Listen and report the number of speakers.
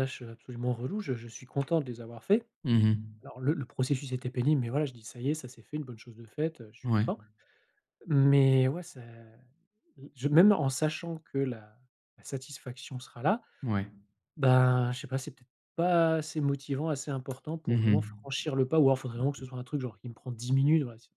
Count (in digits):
2